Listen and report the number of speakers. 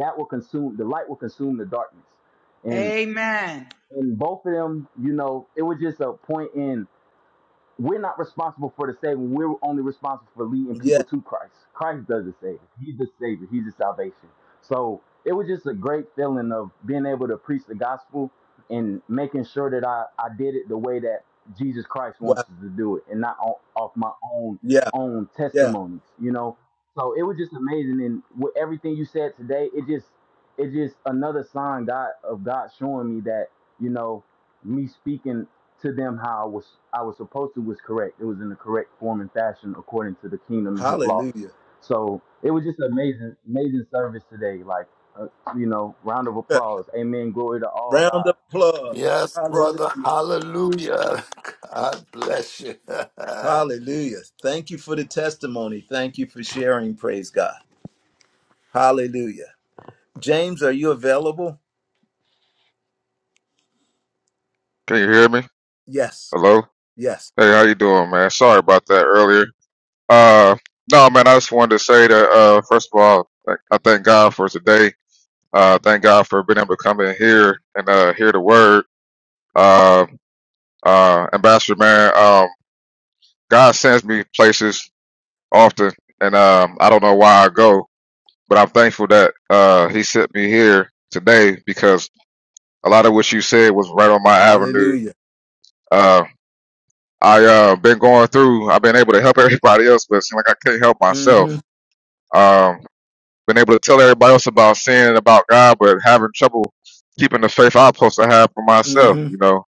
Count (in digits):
5